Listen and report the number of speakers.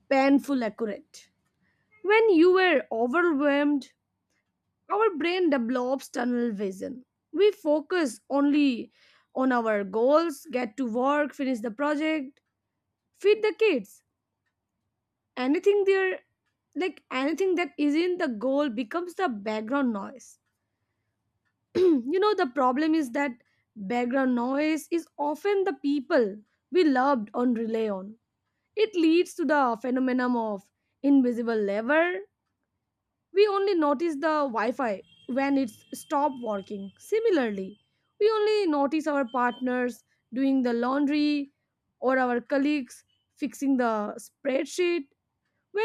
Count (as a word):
one